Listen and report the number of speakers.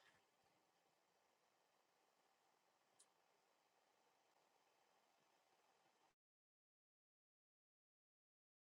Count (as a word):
zero